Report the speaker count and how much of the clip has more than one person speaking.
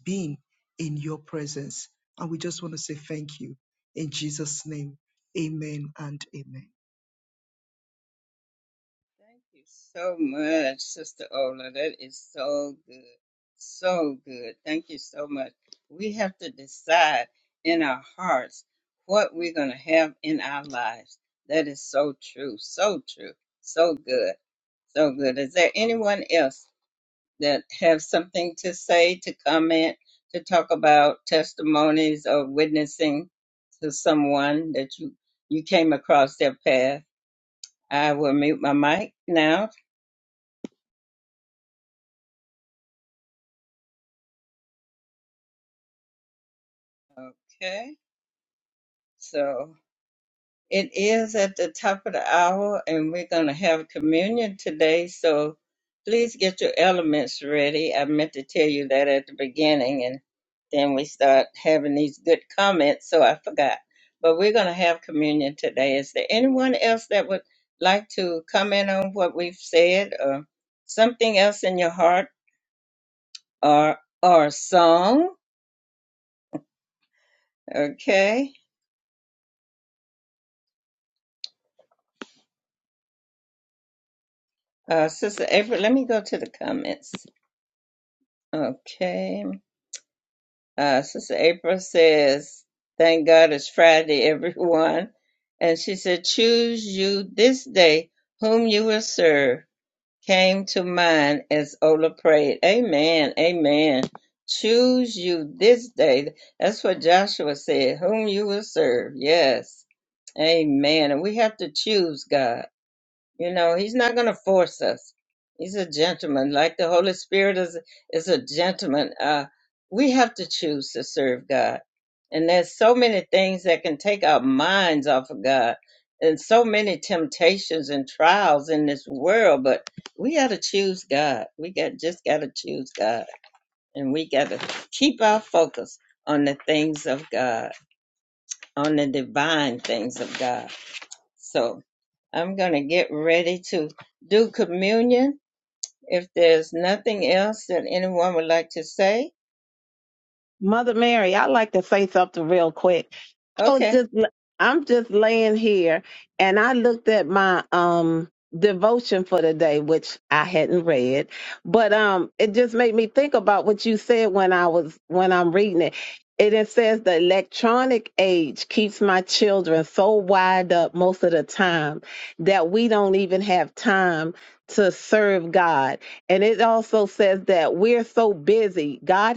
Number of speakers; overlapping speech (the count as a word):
three, under 1%